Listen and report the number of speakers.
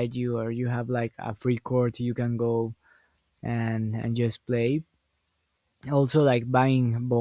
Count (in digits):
1